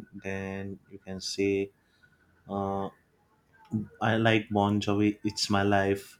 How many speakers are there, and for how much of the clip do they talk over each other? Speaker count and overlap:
1, no overlap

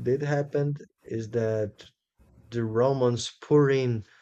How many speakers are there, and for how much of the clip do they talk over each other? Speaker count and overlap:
1, no overlap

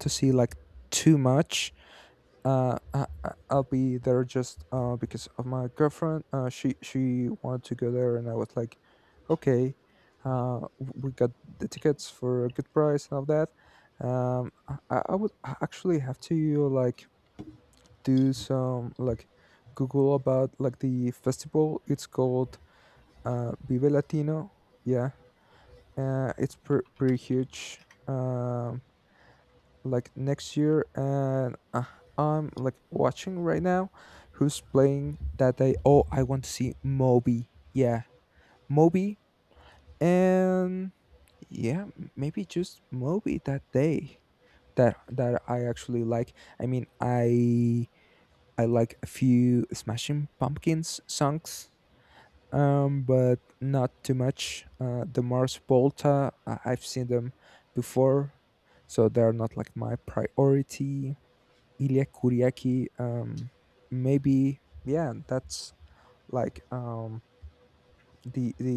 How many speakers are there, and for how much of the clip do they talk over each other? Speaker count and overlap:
1, no overlap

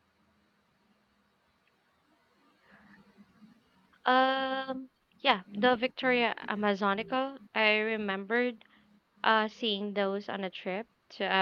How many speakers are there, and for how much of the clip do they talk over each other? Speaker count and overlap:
1, no overlap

